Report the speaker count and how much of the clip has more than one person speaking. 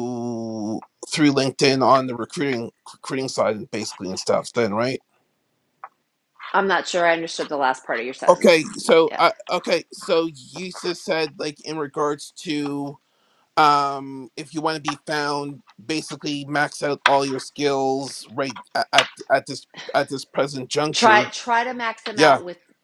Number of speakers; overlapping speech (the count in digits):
2, about 5%